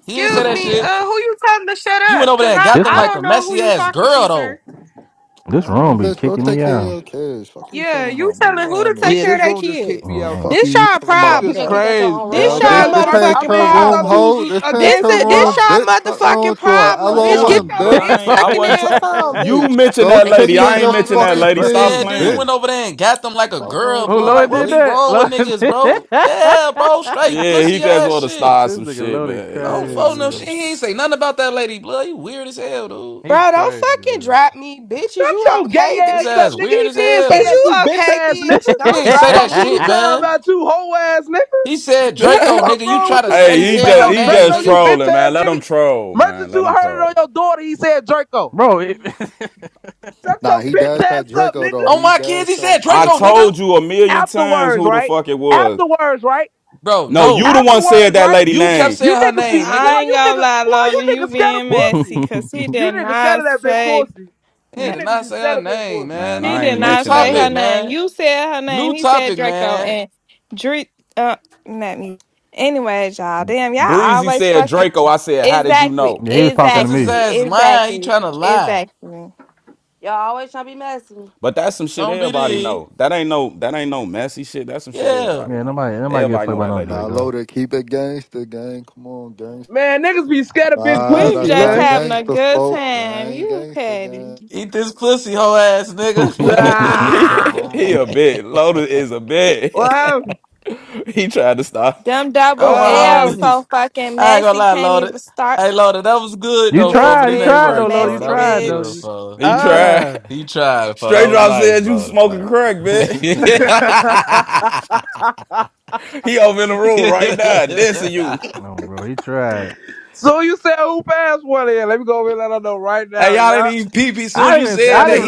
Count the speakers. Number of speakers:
8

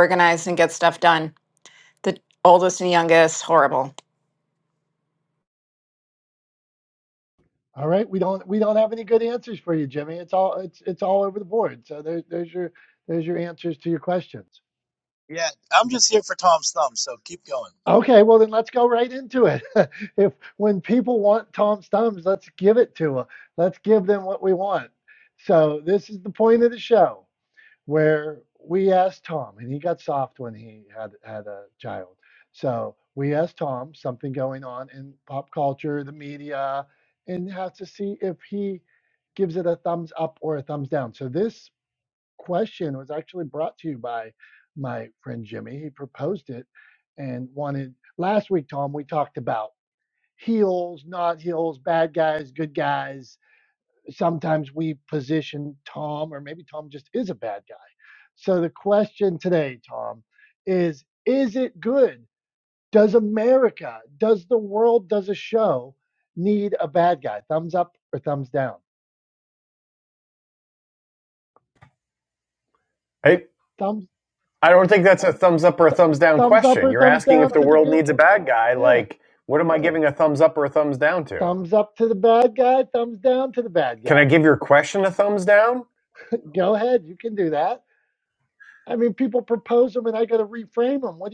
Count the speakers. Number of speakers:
4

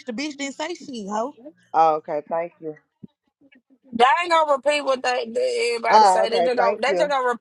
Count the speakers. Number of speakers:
3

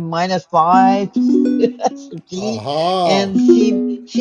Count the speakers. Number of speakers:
2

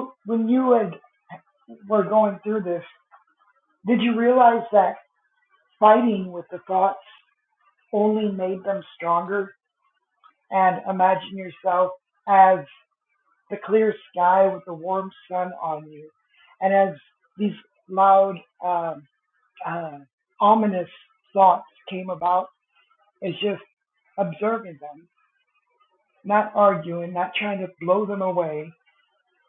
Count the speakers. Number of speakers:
1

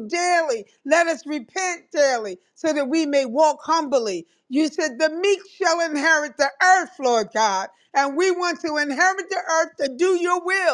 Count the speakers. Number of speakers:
1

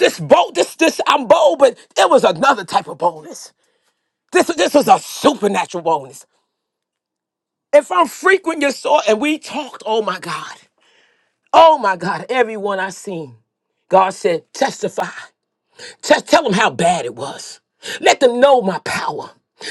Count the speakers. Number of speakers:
1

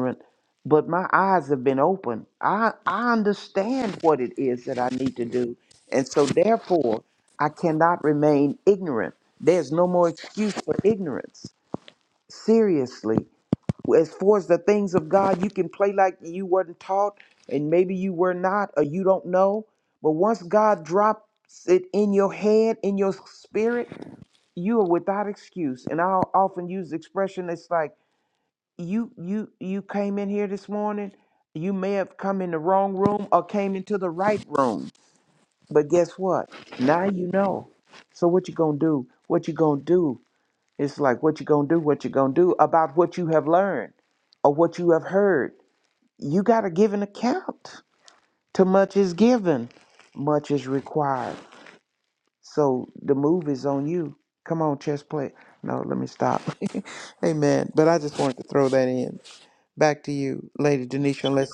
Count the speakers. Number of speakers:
1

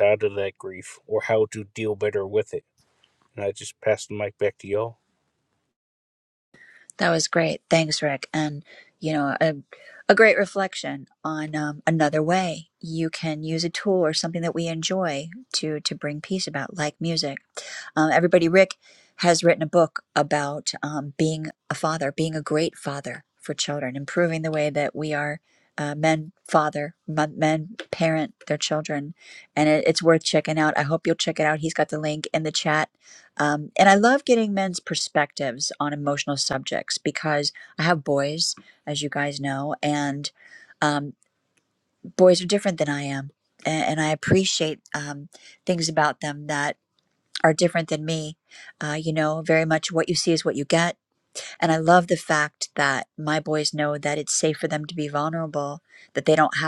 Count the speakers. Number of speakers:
2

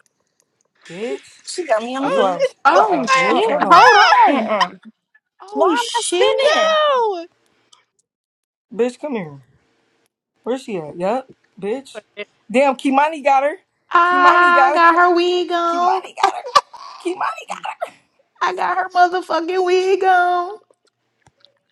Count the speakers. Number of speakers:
4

